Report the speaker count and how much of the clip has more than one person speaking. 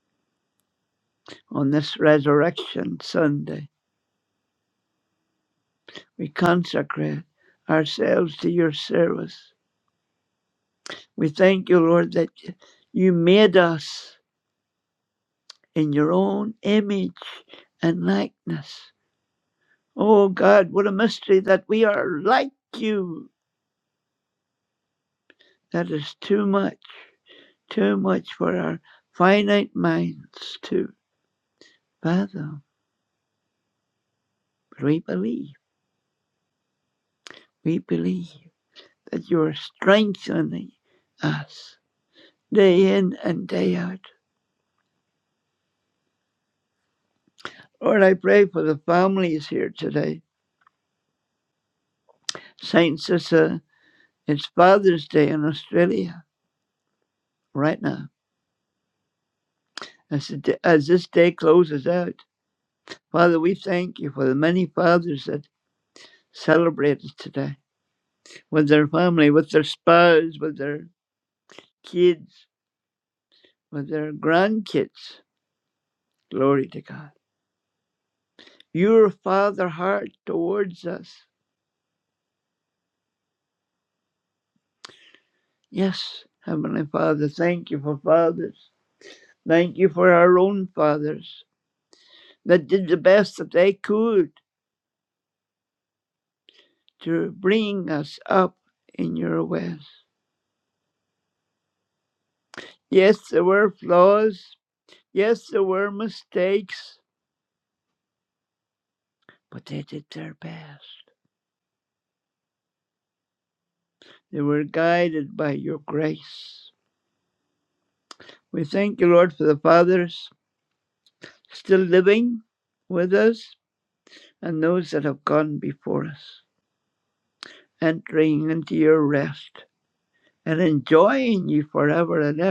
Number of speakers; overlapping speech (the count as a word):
one, no overlap